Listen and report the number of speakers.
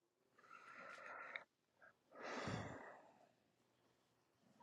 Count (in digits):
0